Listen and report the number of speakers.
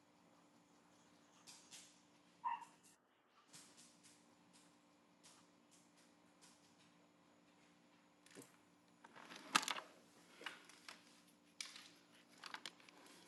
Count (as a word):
zero